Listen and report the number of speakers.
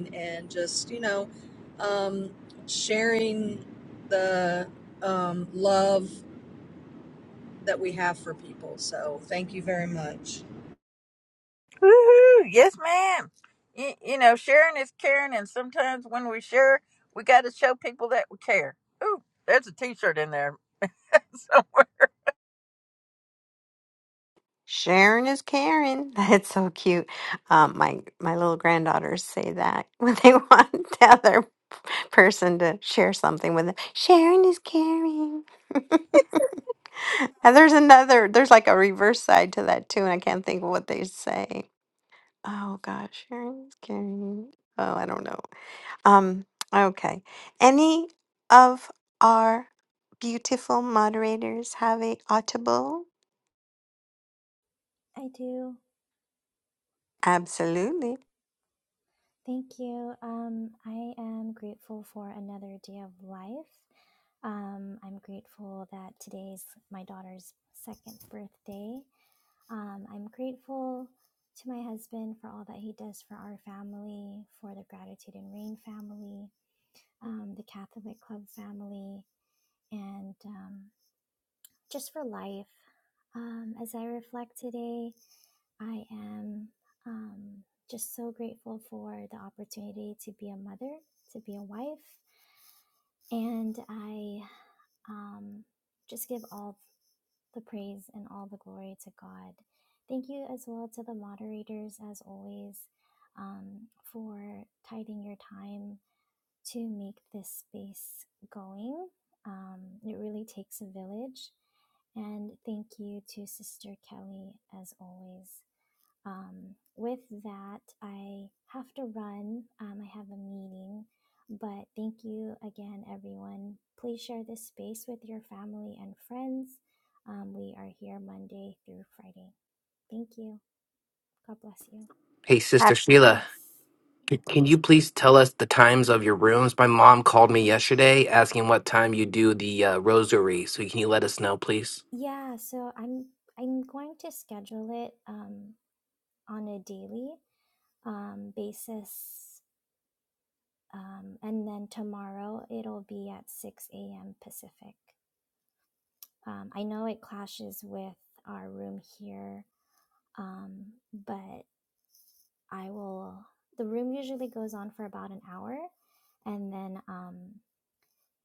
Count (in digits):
5